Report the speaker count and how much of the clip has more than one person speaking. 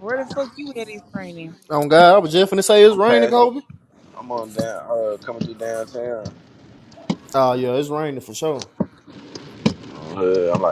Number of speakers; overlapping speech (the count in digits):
3, about 5%